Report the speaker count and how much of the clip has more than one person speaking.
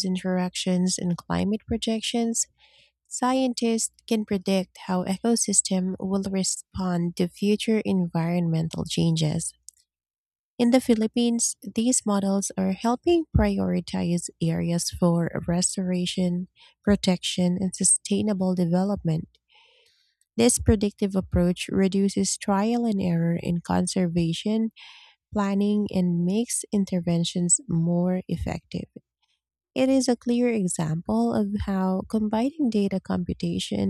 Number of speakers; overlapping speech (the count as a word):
one, no overlap